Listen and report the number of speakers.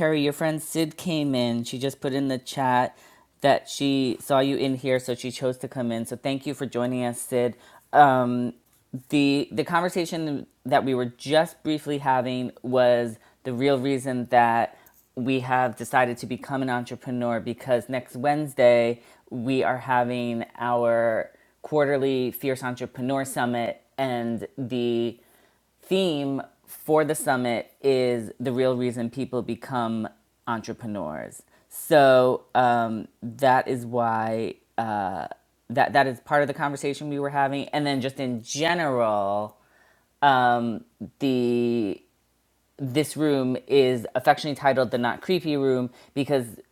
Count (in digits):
1